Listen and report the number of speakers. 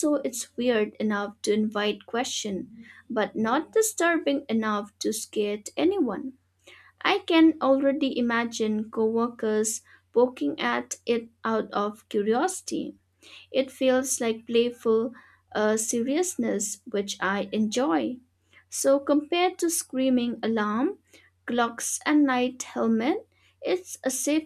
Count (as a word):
one